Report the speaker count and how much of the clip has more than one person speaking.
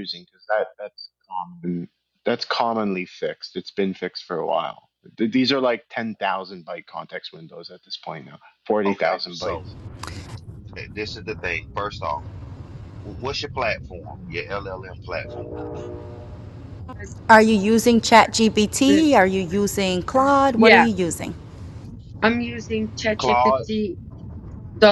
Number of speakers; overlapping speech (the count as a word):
four, about 7%